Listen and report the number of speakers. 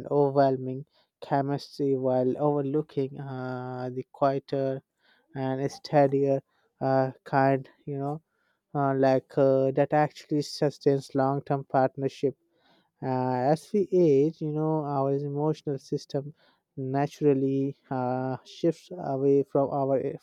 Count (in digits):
1